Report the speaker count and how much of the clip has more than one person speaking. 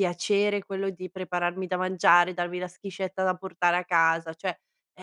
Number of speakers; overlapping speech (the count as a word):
one, no overlap